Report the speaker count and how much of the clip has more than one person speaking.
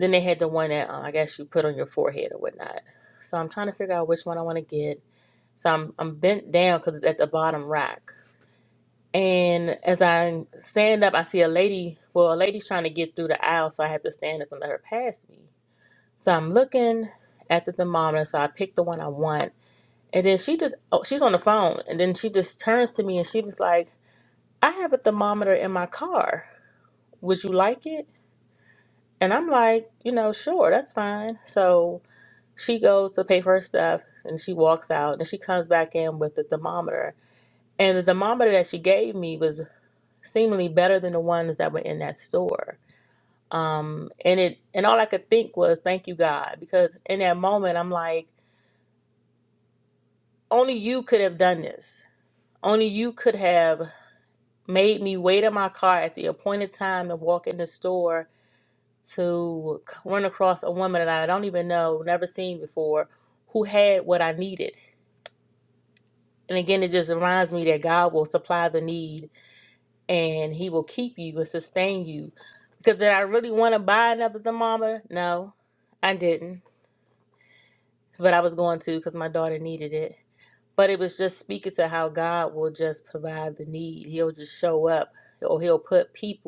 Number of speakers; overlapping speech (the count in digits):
1, no overlap